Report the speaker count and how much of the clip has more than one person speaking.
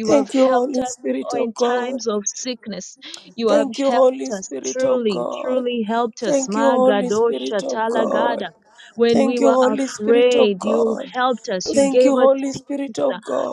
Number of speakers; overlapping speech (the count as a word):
two, about 64%